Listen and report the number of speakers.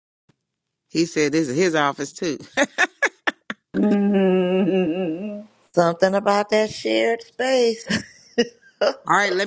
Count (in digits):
3